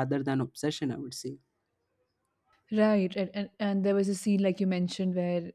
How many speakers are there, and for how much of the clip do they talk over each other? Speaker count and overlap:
2, no overlap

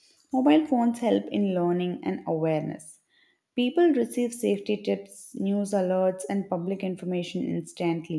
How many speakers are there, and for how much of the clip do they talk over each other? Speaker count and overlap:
1, no overlap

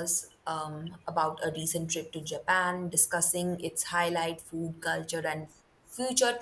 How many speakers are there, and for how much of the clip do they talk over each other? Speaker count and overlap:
1, no overlap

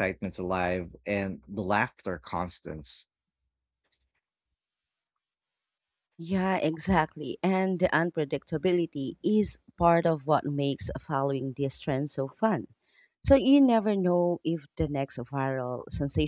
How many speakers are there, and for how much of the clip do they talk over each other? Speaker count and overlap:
2, no overlap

